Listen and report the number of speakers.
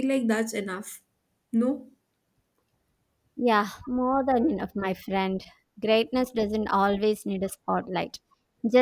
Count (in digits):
2